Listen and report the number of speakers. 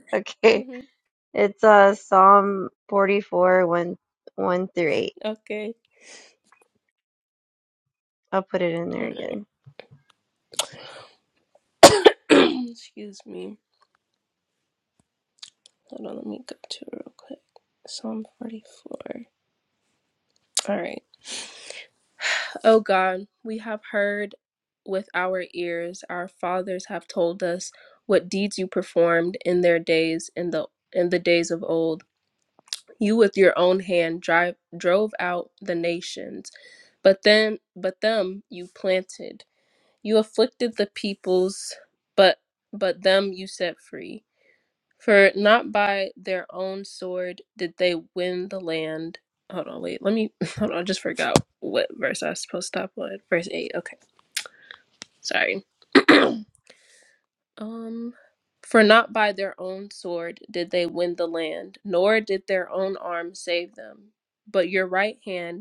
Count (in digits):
2